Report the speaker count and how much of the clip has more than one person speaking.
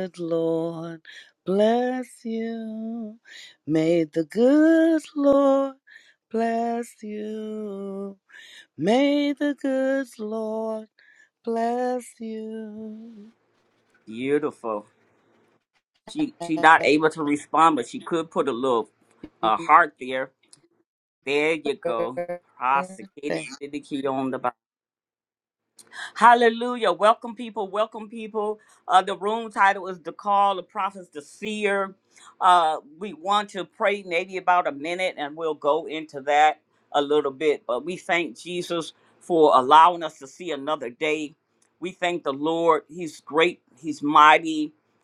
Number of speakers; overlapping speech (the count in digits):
2, about 1%